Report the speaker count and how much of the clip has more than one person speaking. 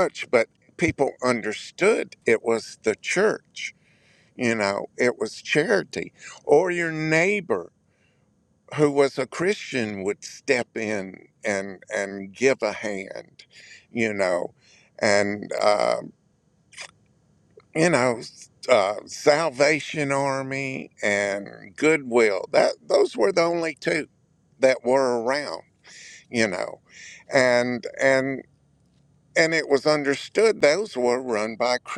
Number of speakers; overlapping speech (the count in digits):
1, no overlap